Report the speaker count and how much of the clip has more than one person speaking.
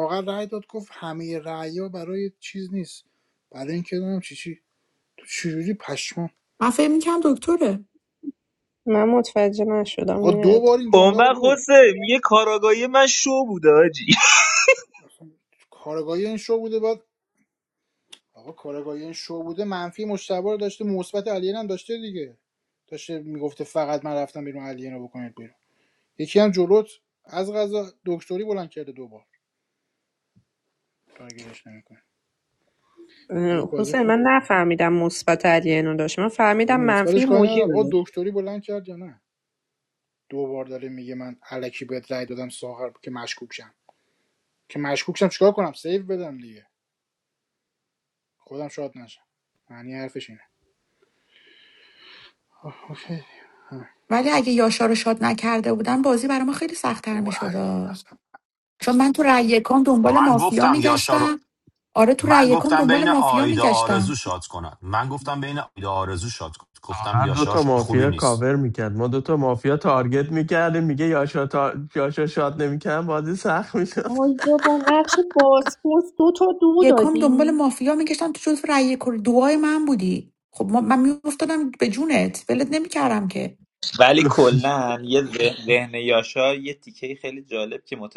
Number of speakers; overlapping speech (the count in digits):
7, about 10%